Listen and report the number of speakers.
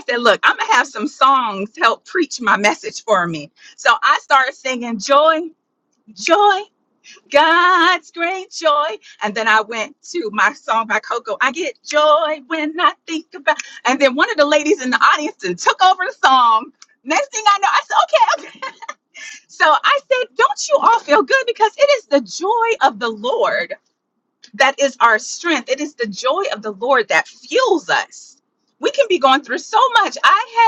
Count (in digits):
1